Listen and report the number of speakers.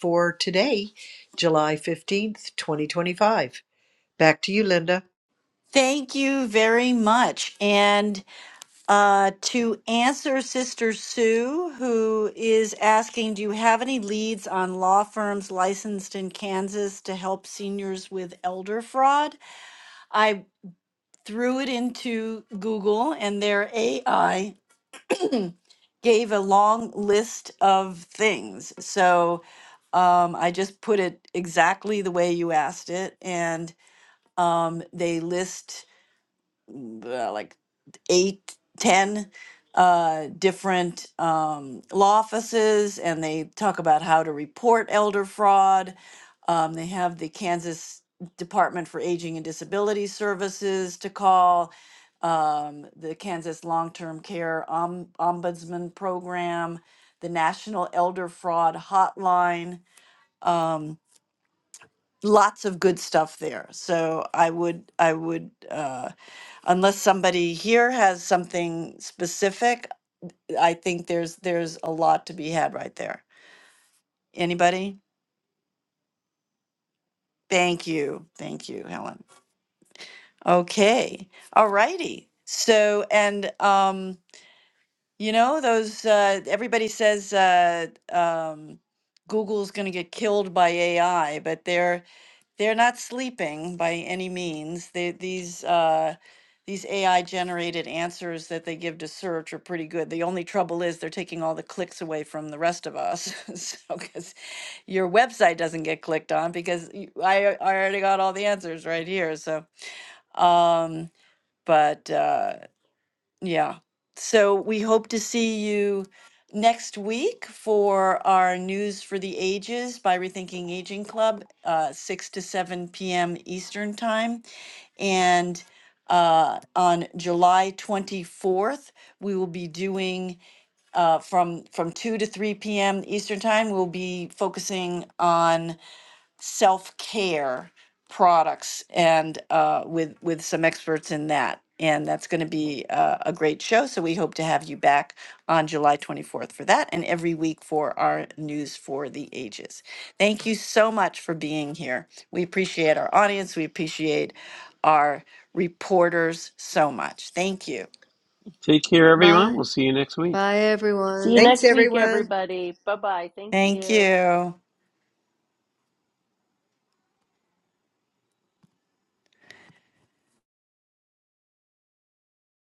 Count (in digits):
5